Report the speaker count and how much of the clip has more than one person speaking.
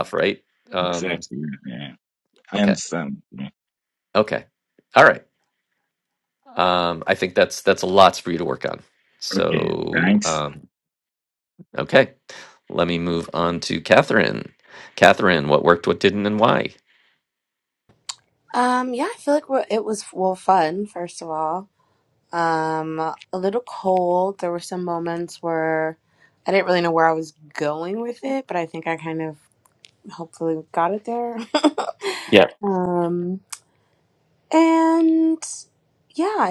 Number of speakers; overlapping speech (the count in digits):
3, about 4%